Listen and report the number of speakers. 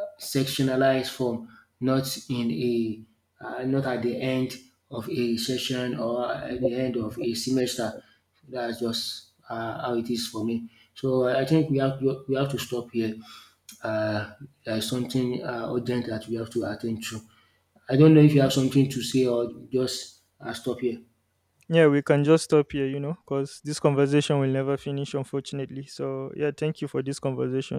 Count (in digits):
2